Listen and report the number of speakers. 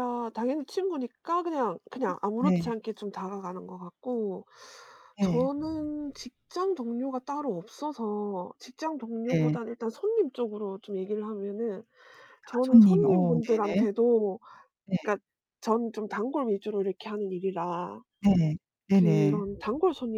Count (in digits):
2